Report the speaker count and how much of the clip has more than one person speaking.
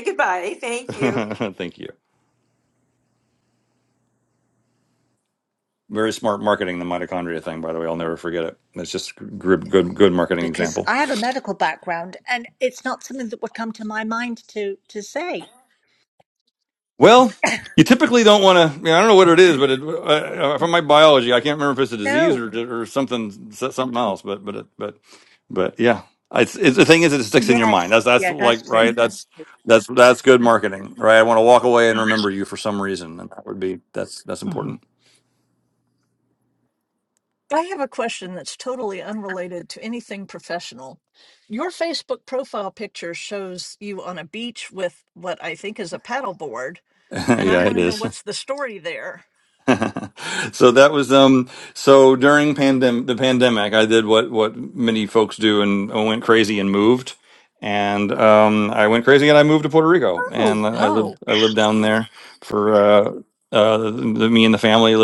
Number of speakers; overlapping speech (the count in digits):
4, about 6%